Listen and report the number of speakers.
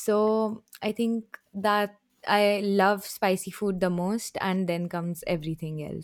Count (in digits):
1